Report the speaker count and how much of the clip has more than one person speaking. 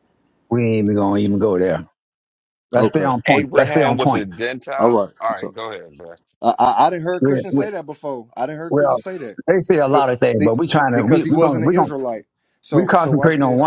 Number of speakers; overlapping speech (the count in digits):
3, about 36%